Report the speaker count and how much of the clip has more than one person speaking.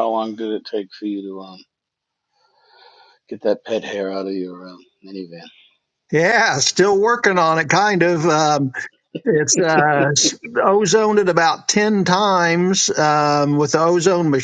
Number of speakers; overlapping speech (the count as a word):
two, no overlap